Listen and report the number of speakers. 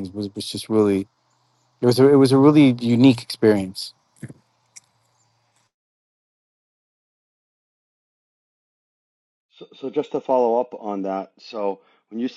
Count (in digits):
2